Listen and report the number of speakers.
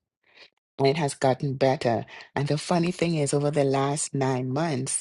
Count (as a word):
one